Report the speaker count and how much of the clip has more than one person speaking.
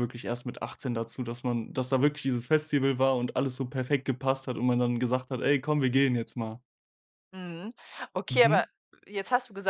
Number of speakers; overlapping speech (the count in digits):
2, about 3%